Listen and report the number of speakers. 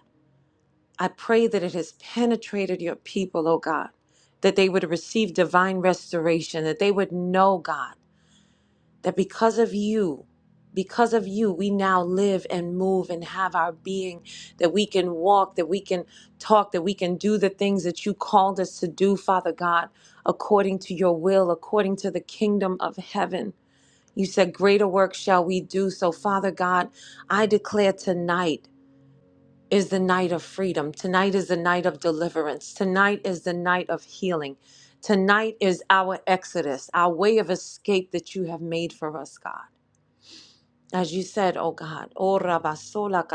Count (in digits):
1